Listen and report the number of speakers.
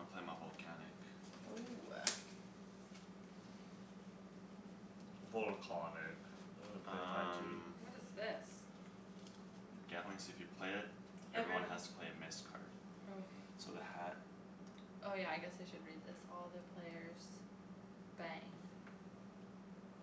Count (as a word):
four